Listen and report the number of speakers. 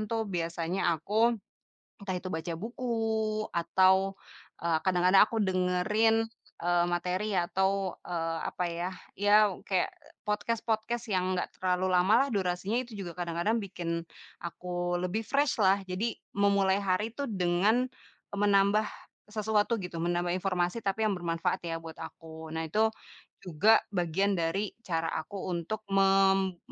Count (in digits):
1